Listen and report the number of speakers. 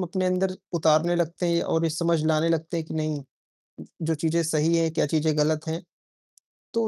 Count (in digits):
1